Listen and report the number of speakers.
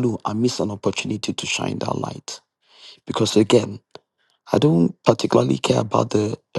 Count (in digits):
1